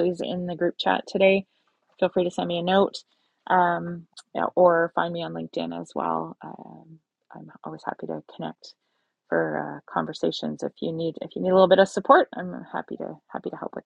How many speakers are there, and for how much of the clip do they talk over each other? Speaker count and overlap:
1, no overlap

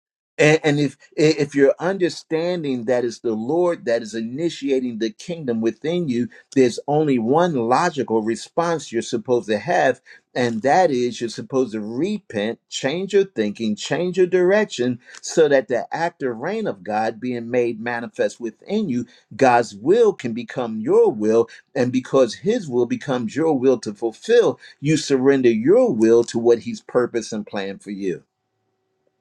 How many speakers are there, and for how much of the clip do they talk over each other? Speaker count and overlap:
1, no overlap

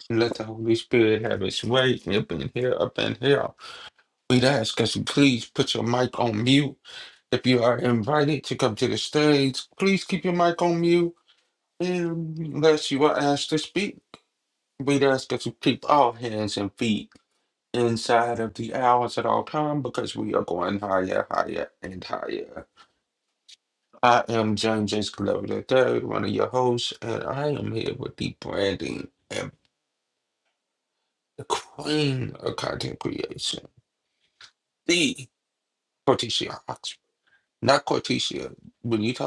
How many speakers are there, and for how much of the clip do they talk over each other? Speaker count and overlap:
1, no overlap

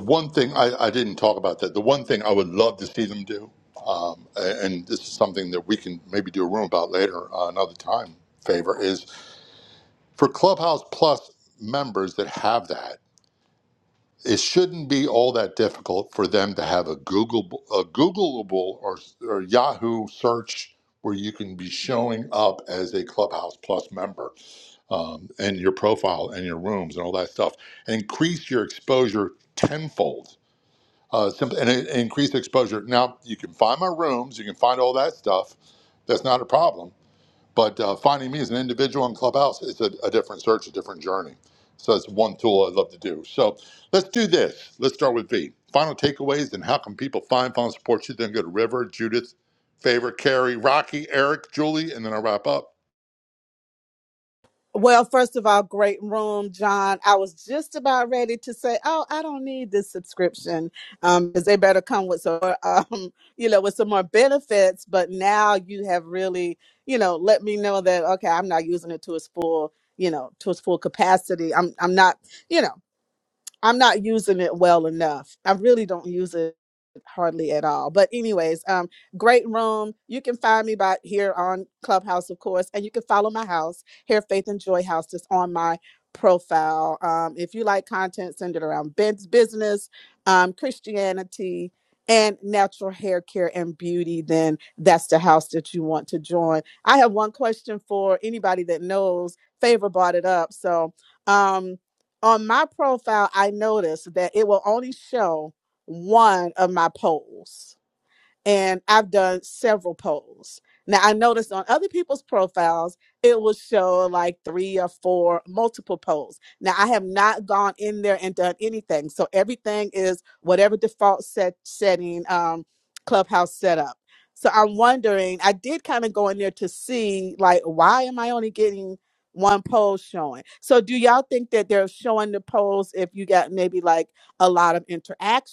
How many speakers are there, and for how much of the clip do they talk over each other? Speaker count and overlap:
2, no overlap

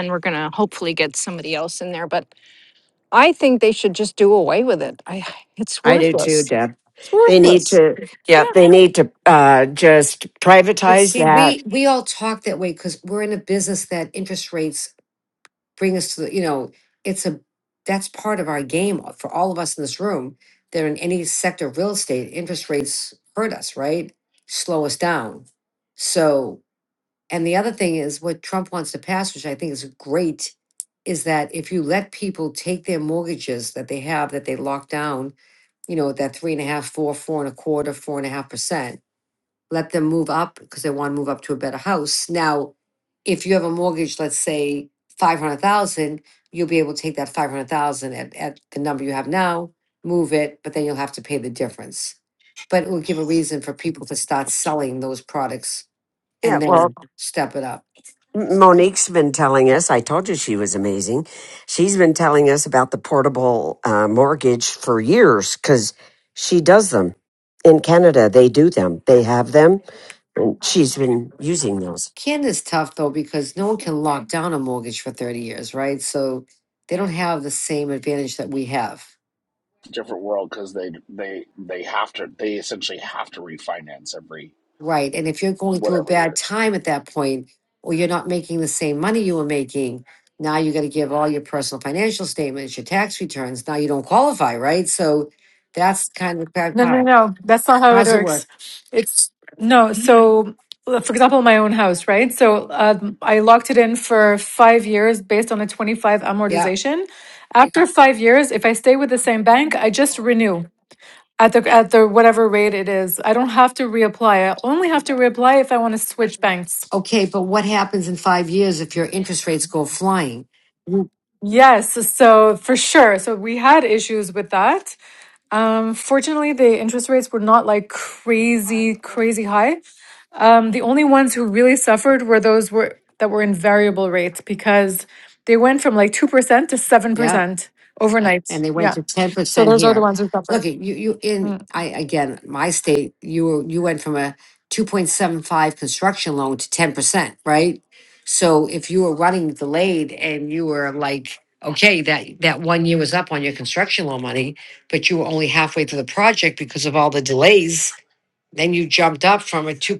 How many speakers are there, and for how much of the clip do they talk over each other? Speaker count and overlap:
5, about 3%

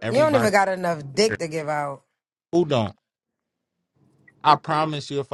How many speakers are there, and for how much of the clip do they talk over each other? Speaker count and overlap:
2, about 10%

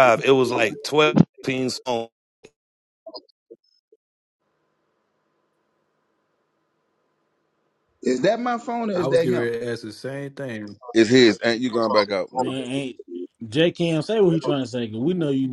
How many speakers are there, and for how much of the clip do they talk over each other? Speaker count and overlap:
5, about 4%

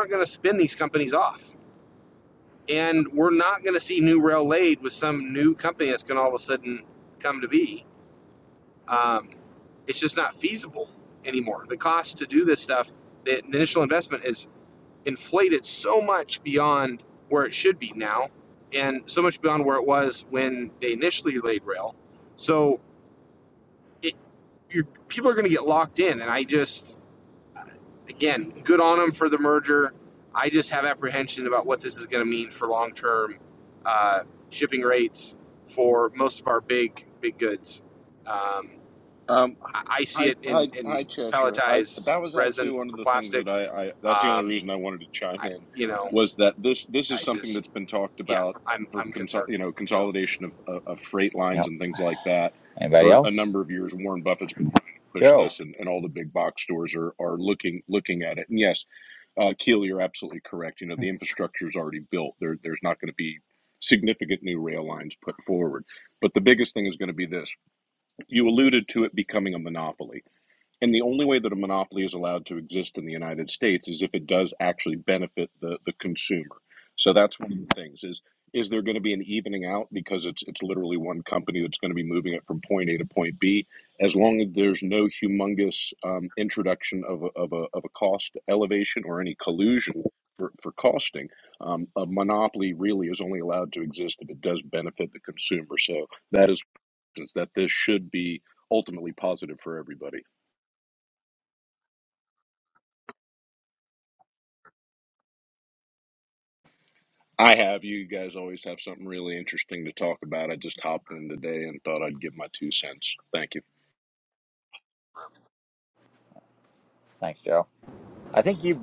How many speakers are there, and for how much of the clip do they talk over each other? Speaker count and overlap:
3, about 5%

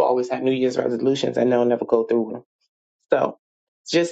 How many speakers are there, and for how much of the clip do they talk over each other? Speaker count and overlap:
1, no overlap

